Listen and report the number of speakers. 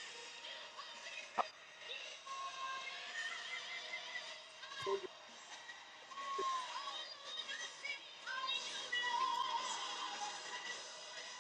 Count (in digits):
0